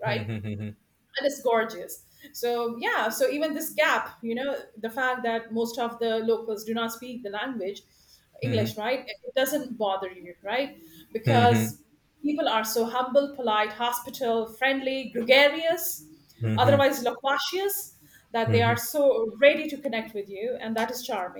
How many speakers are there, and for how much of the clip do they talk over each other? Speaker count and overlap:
2, about 7%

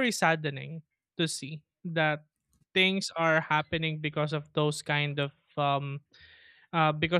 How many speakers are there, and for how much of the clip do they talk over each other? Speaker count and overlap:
1, no overlap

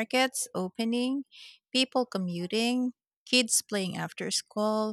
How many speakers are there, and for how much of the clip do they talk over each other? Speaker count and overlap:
1, no overlap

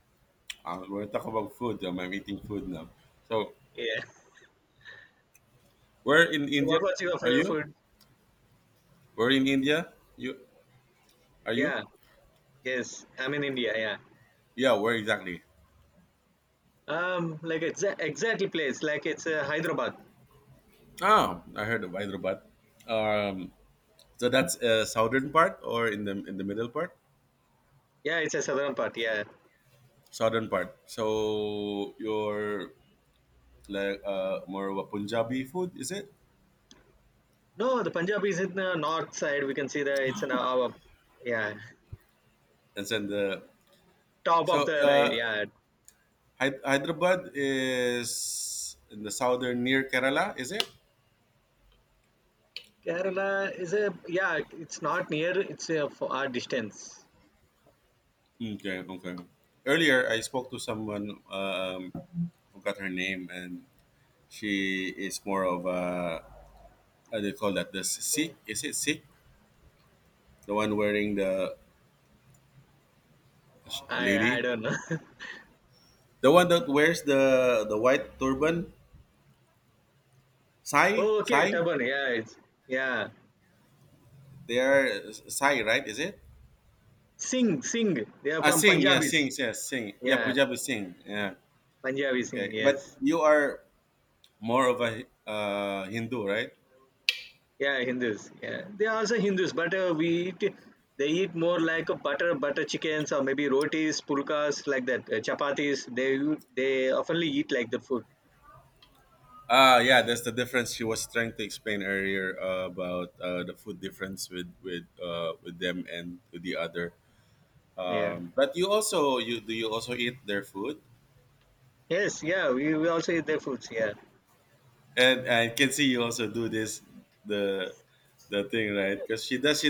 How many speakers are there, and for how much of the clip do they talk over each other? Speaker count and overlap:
2, about 4%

